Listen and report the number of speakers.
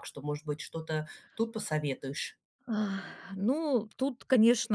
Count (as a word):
two